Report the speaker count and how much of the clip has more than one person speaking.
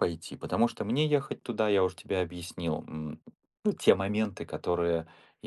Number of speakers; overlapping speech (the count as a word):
one, no overlap